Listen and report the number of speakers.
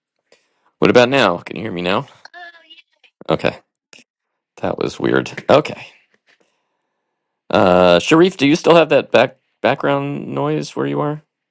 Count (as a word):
one